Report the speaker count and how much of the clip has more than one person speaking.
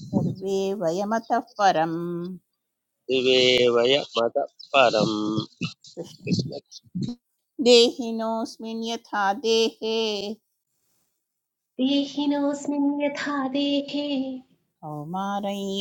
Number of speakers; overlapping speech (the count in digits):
3, no overlap